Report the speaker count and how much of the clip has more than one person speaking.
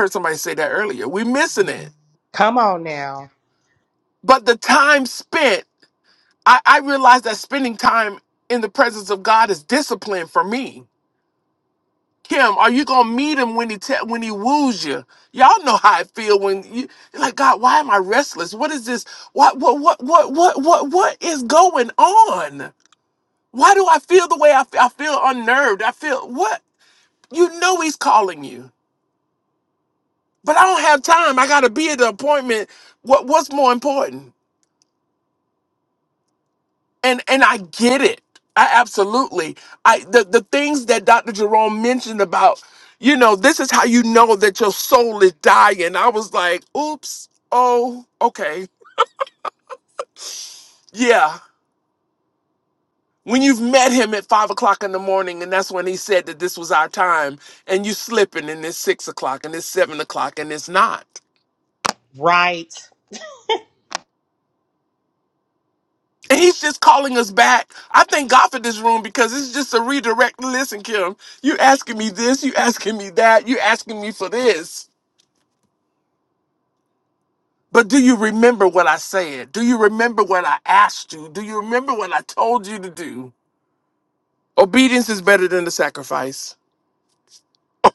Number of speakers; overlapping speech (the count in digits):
2, no overlap